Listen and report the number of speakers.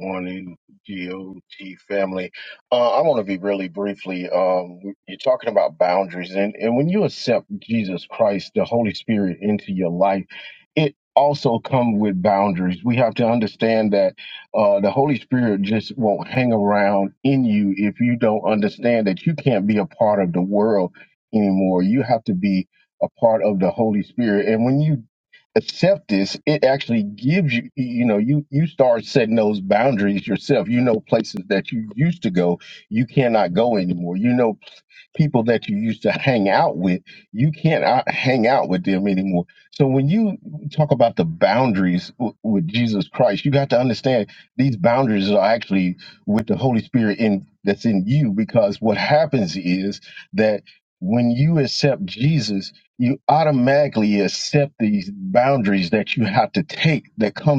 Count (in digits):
1